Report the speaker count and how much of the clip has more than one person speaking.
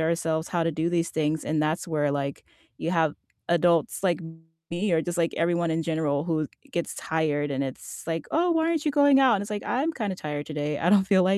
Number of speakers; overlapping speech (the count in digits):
1, no overlap